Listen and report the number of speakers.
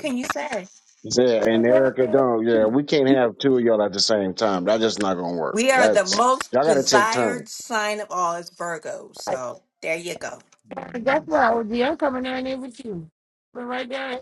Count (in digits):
3